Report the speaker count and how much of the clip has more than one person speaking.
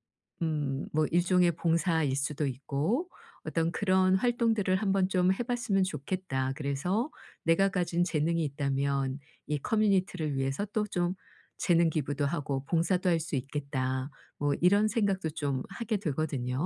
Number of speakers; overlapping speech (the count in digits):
1, no overlap